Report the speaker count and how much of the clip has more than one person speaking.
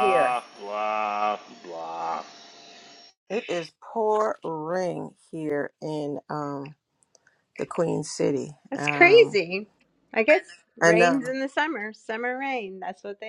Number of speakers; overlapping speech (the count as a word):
three, about 8%